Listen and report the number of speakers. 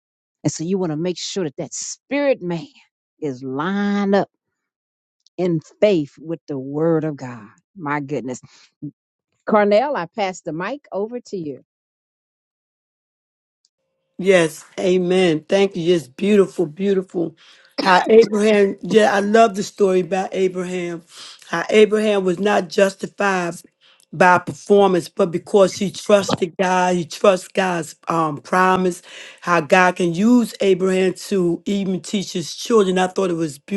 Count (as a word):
two